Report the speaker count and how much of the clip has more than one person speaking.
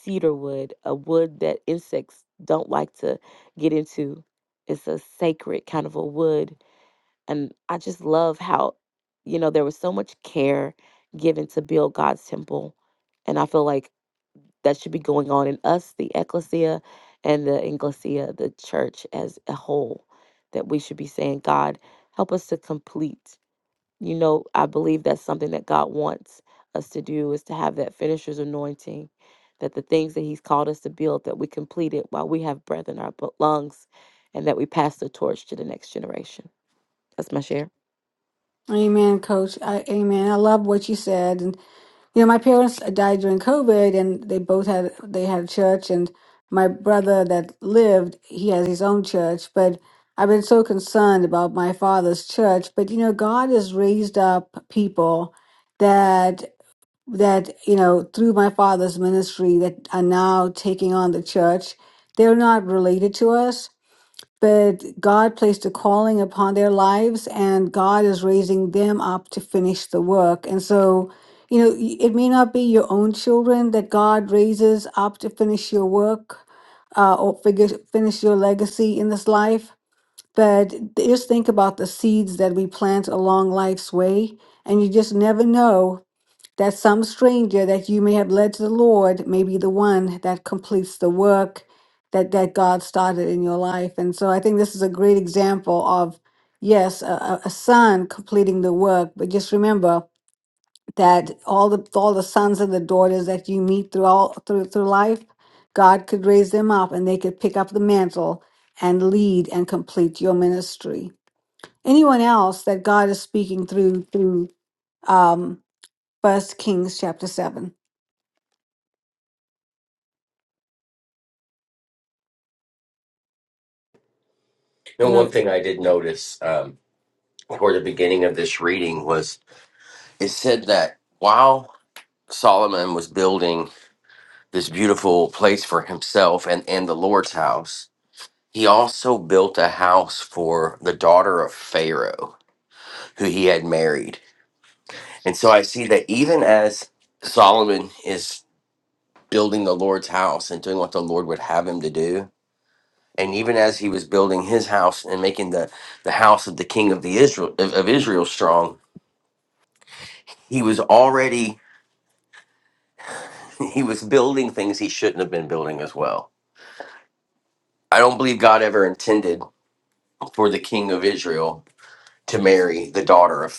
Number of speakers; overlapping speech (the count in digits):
3, under 1%